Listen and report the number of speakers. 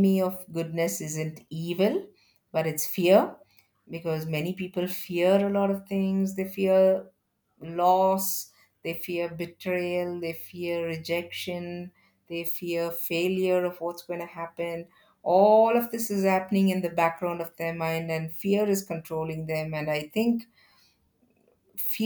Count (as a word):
one